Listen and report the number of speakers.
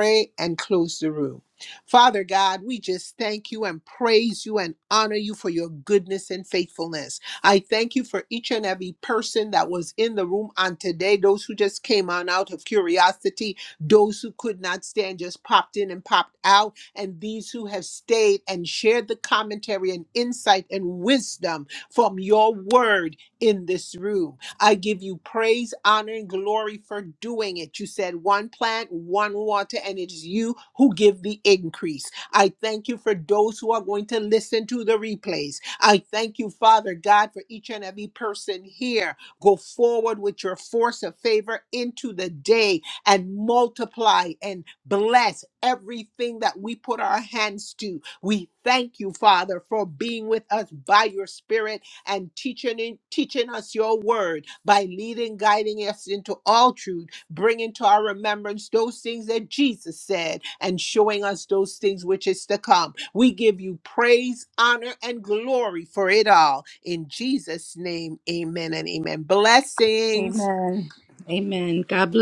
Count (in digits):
2